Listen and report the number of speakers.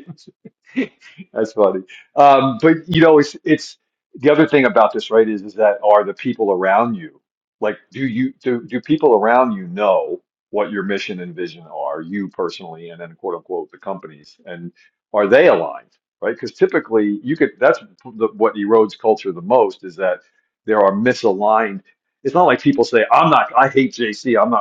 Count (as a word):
one